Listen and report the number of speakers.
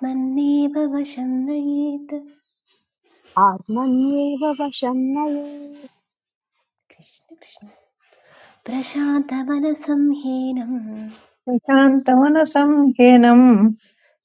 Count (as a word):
three